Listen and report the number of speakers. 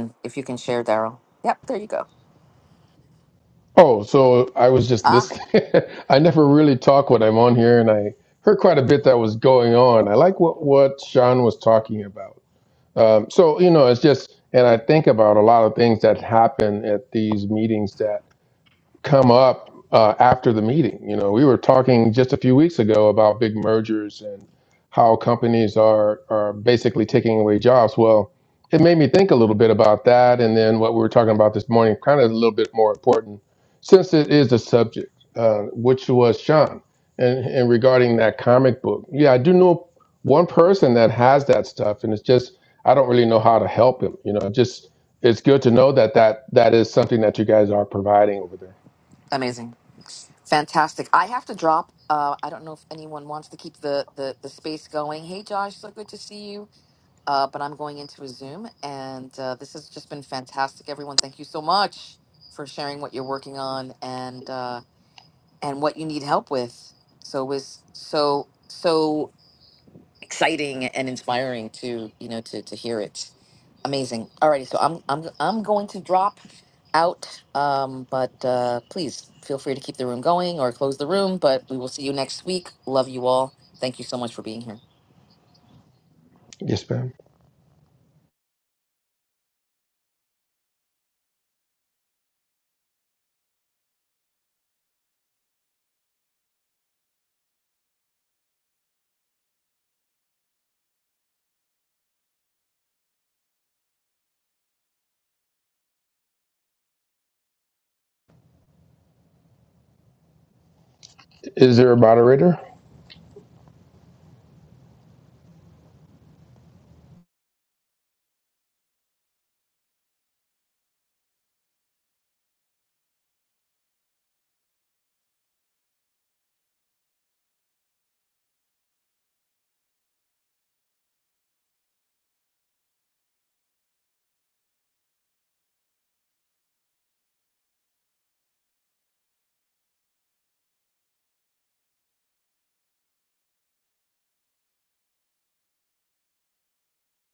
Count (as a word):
two